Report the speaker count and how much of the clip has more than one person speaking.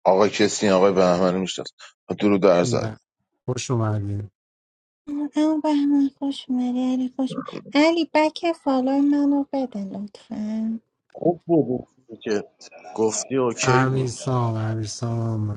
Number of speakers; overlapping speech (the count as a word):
four, about 7%